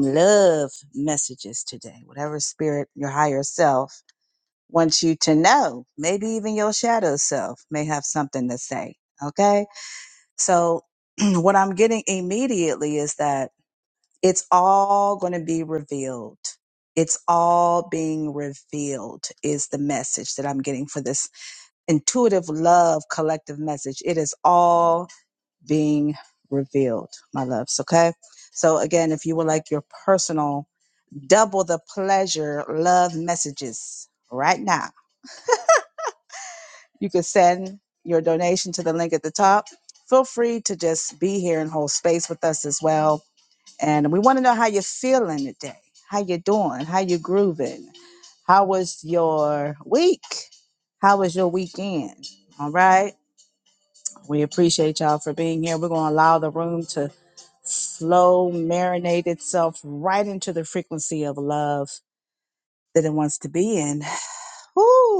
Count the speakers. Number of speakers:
1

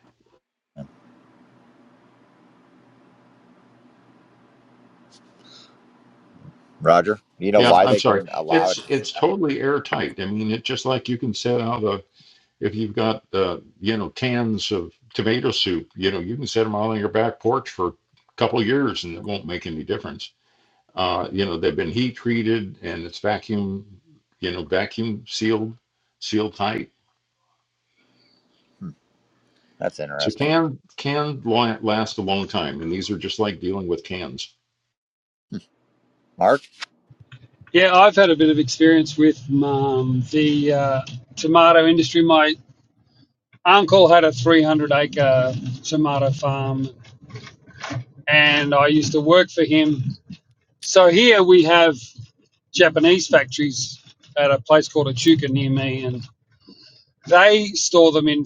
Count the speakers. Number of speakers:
3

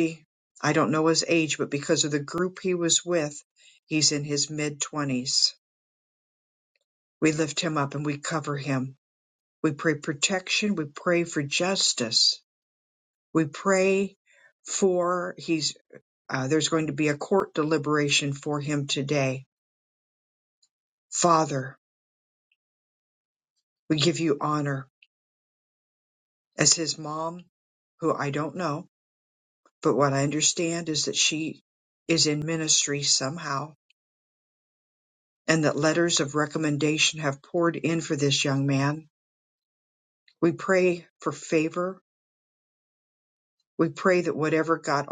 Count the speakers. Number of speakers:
1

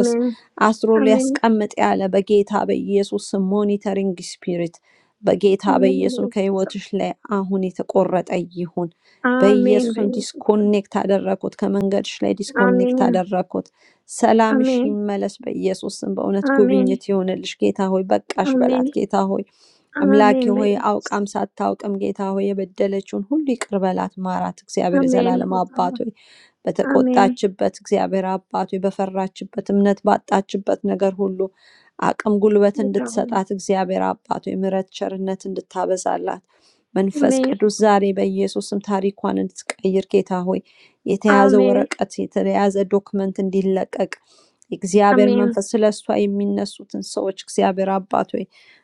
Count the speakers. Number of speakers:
2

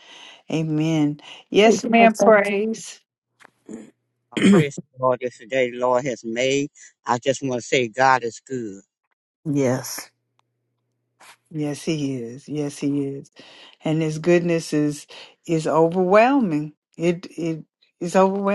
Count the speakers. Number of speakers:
3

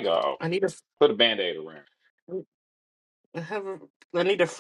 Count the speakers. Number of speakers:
2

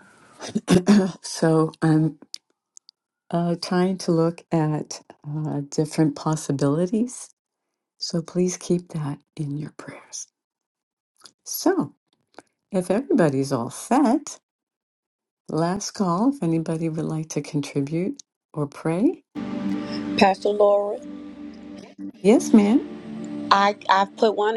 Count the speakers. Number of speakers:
2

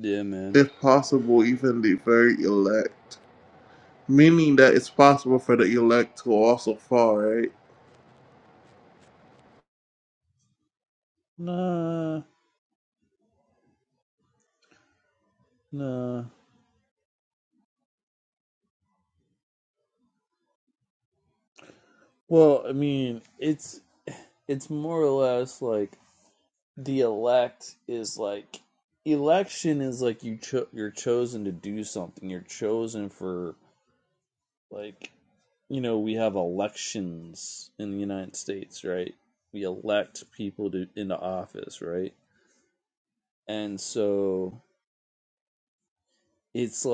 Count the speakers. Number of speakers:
2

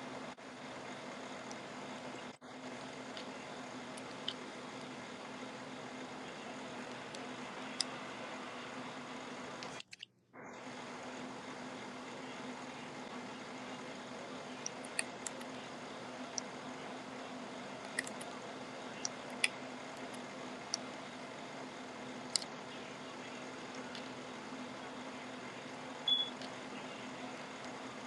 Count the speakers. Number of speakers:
0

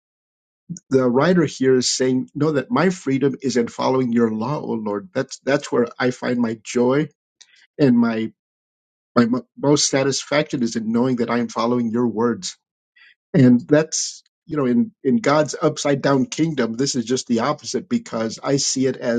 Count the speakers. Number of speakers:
1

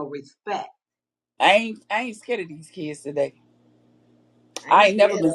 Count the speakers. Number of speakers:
2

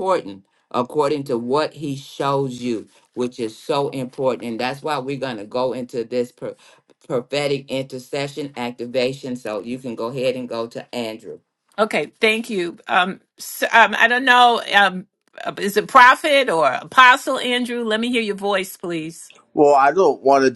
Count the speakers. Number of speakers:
3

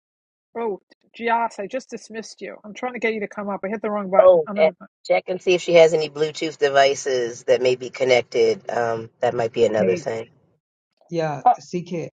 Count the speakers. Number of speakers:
3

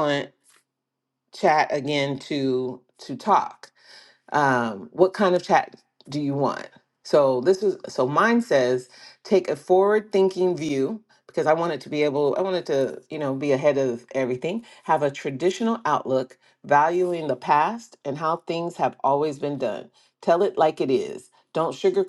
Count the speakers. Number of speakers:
1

